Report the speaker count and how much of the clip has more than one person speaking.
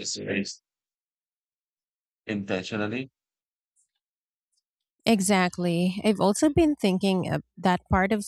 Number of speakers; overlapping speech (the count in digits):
2, no overlap